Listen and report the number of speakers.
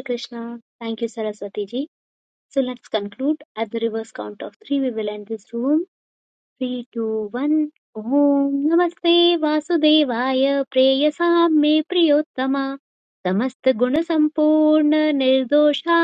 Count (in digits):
1